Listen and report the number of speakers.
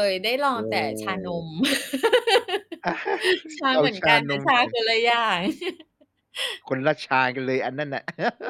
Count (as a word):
two